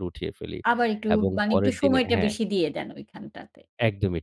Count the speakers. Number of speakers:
two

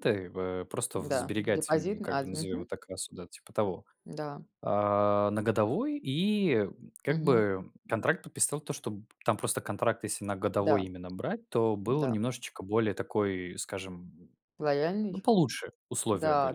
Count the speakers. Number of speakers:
two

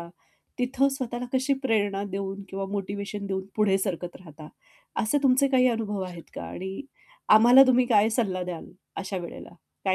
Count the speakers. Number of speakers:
one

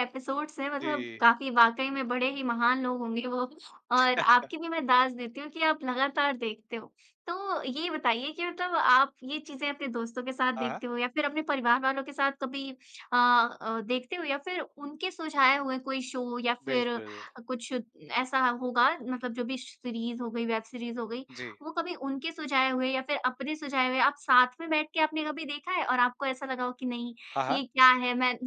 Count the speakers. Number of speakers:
two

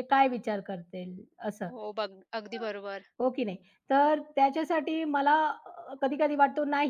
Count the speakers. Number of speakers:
two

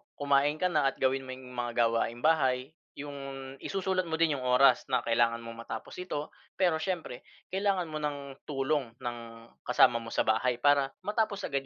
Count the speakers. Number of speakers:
one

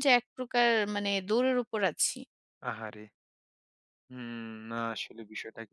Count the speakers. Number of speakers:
two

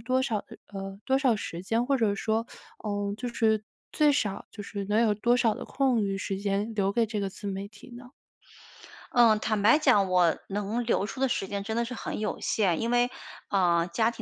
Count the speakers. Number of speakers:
two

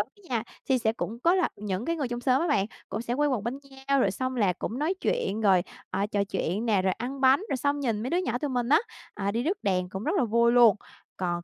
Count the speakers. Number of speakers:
one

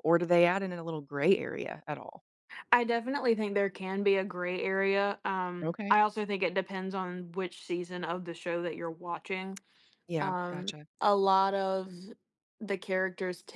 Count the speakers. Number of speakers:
two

